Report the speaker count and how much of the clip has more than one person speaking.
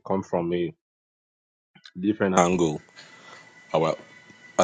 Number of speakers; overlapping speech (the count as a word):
one, no overlap